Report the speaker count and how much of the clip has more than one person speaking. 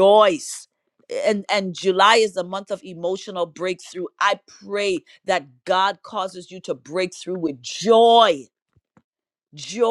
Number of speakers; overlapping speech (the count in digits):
1, no overlap